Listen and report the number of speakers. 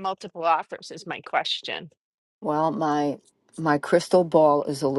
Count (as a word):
two